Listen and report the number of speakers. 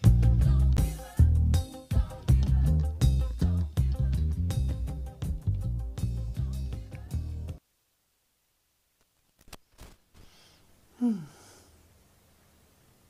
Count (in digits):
0